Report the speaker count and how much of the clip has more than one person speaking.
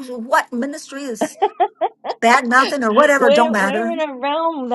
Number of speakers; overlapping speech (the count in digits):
2, about 17%